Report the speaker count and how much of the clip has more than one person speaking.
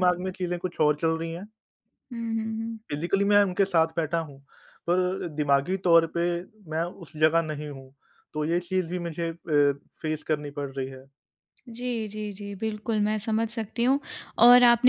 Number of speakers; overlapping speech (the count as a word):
two, no overlap